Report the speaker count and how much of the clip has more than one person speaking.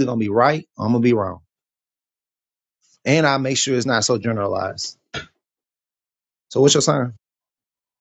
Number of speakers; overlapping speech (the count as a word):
one, no overlap